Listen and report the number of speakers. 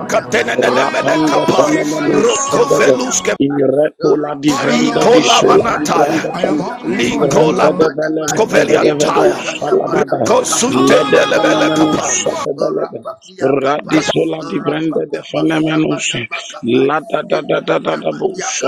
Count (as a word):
three